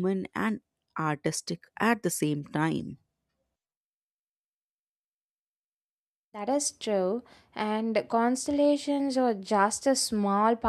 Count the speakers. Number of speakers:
2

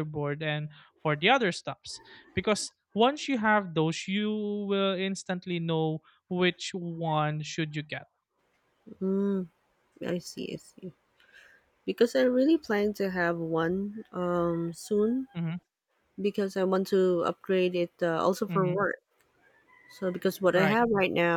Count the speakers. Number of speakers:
2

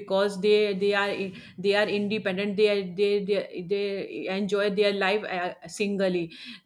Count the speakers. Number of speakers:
1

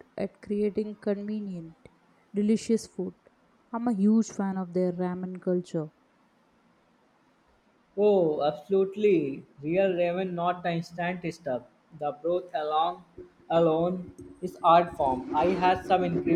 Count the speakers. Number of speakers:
2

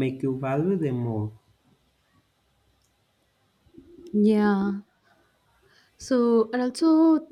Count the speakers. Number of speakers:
2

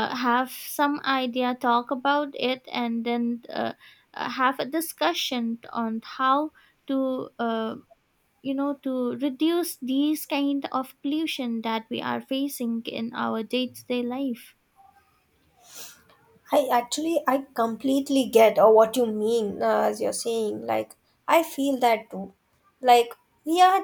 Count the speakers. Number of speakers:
2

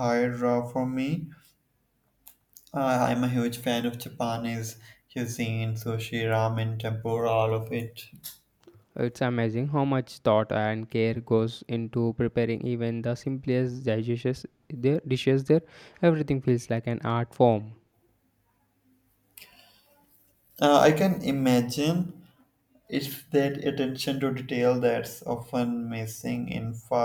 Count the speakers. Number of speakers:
2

